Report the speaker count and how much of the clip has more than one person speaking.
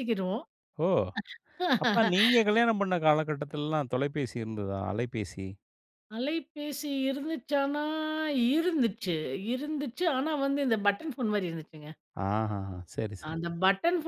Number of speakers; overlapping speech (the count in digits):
2, under 1%